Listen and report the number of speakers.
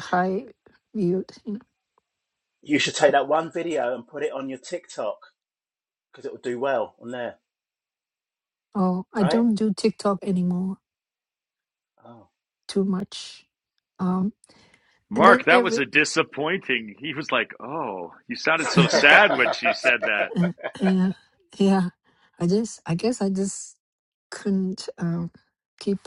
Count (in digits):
3